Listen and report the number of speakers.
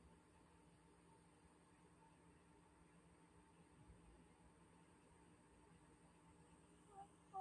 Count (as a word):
zero